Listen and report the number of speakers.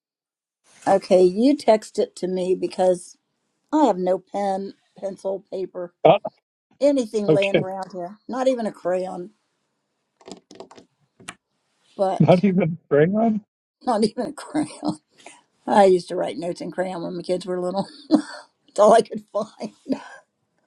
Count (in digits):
2